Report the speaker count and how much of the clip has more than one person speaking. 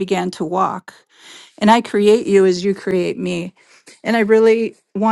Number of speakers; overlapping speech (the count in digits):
1, no overlap